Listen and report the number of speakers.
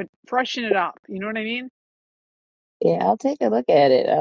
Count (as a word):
two